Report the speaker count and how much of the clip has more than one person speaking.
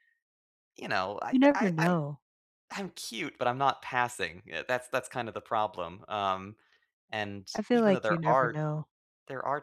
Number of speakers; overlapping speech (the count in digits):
2, about 16%